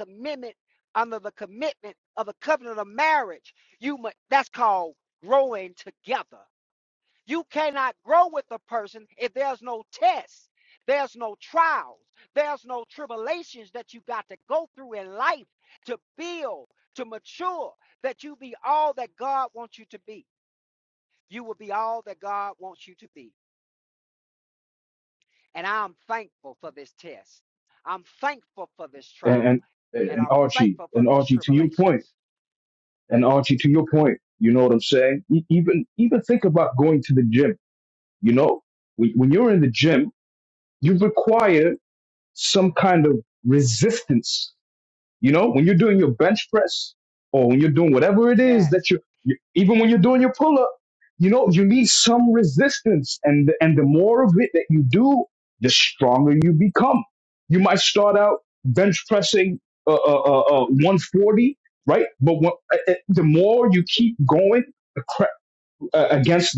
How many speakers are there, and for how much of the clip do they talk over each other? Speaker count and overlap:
2, about 3%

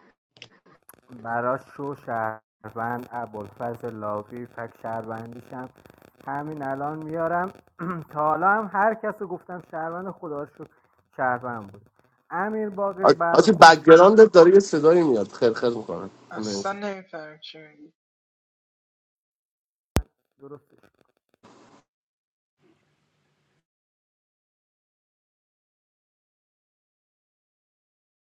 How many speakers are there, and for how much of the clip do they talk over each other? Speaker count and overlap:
3, about 3%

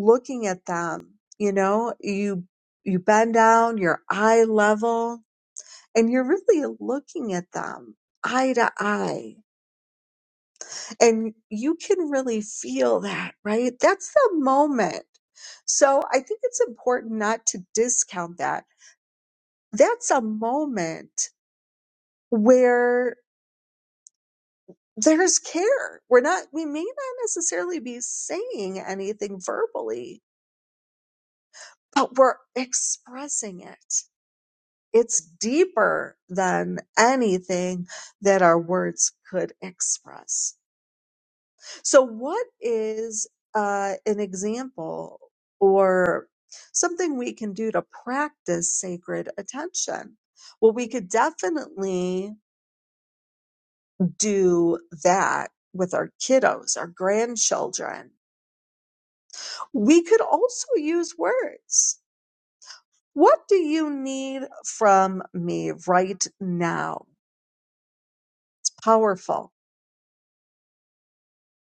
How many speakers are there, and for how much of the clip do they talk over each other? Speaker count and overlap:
1, no overlap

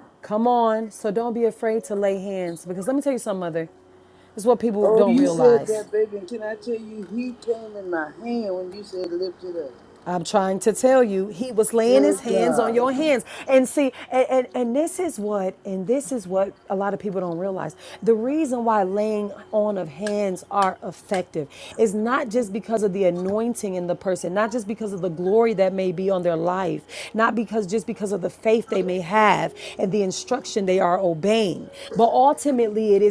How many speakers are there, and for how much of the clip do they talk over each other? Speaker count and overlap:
2, about 5%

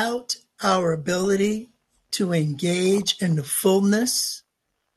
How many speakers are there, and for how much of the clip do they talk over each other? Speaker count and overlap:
1, no overlap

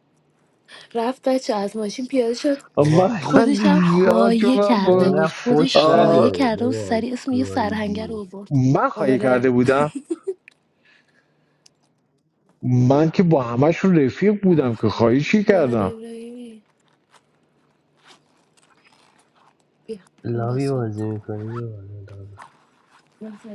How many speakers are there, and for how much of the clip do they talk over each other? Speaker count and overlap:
3, about 28%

